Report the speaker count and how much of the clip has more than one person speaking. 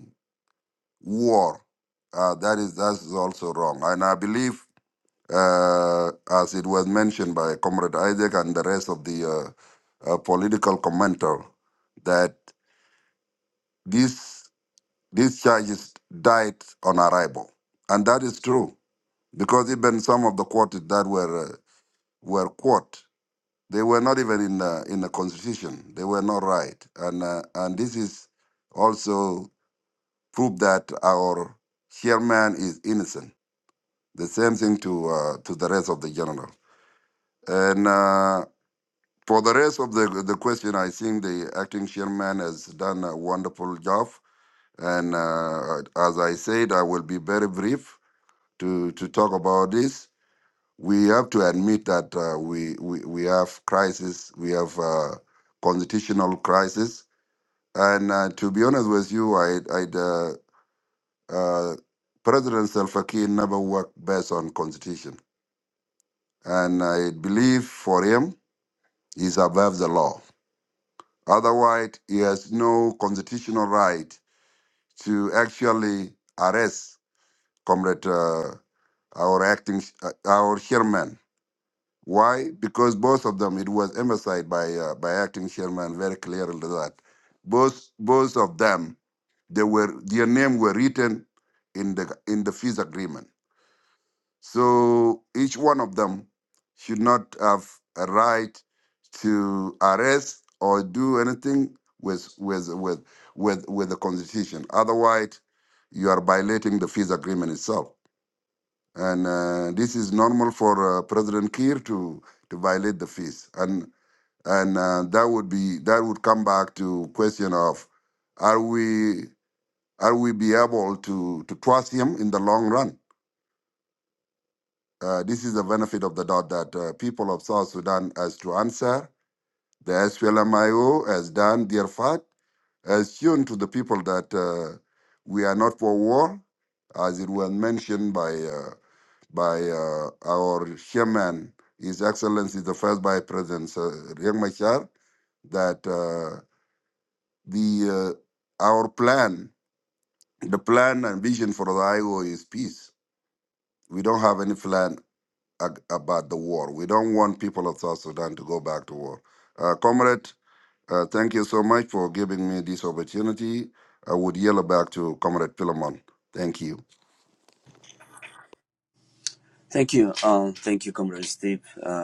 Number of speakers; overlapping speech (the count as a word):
two, no overlap